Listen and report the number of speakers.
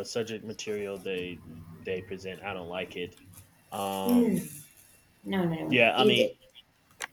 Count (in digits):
2